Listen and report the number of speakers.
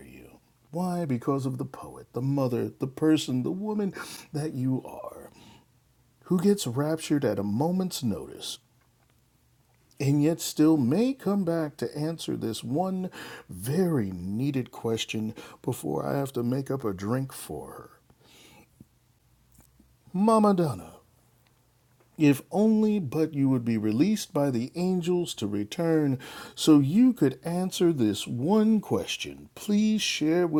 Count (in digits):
1